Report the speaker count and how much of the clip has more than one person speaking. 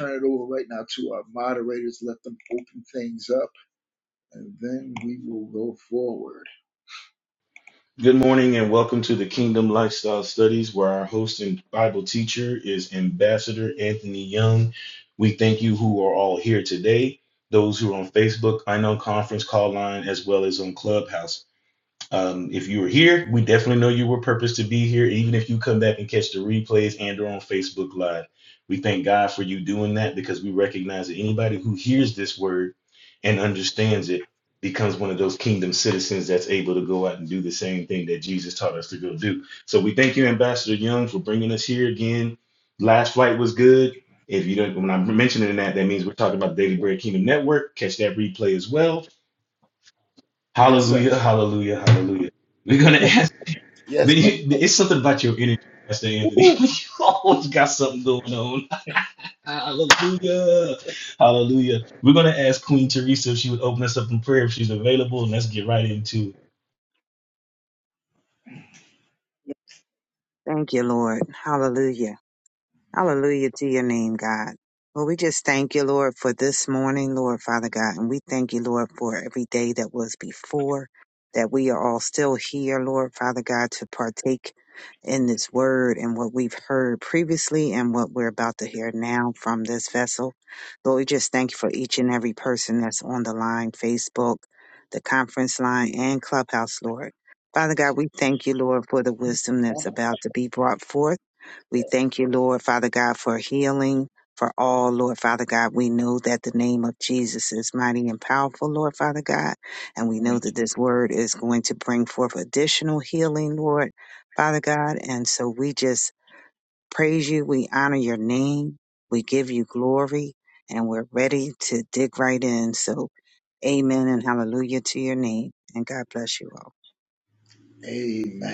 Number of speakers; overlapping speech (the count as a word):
three, about 1%